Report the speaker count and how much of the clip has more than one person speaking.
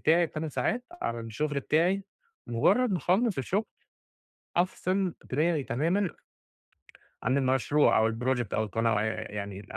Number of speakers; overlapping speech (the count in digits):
1, no overlap